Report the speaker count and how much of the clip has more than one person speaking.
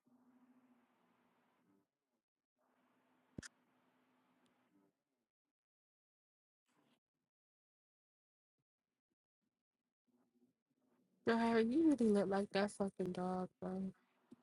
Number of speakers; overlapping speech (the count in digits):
1, no overlap